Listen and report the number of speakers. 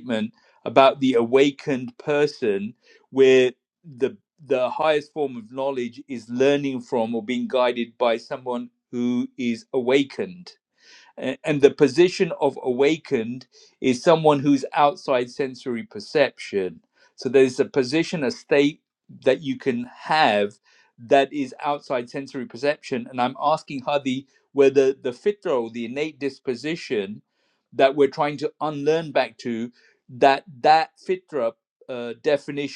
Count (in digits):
1